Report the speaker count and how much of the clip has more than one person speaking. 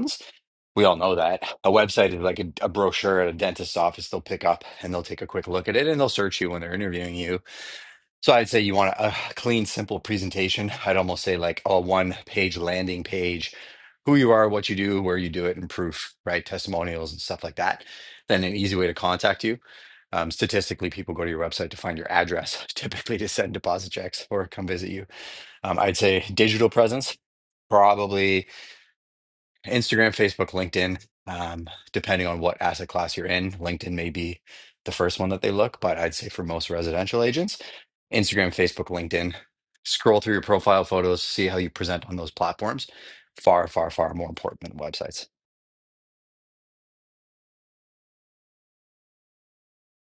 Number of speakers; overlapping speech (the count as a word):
one, no overlap